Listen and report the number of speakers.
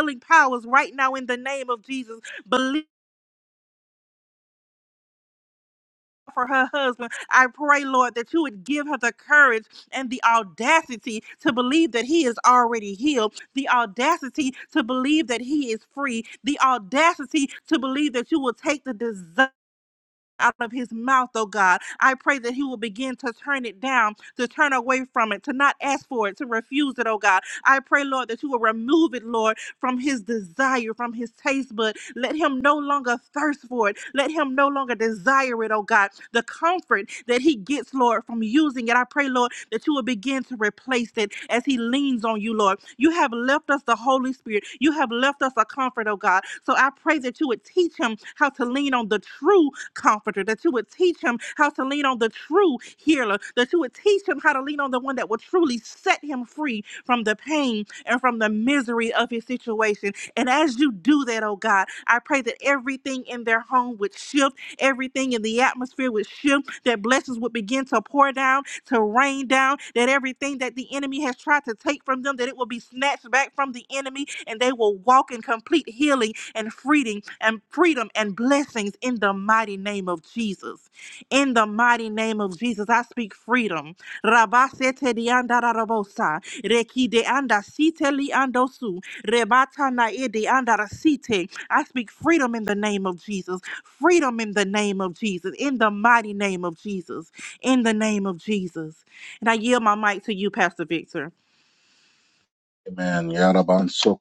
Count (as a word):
two